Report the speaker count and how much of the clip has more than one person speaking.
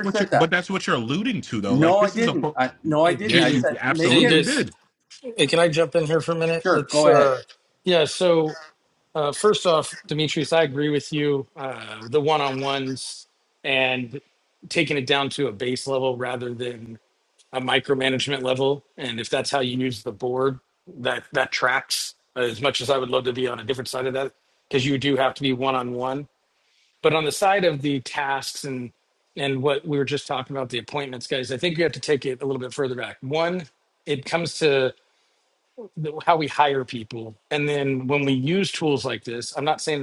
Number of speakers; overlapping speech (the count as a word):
three, about 8%